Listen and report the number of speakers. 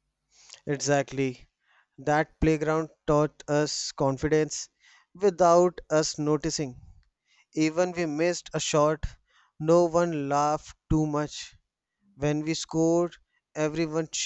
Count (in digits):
1